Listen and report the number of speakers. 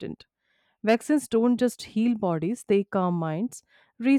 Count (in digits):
1